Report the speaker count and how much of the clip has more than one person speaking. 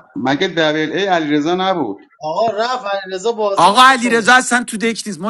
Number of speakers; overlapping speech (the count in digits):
3, about 14%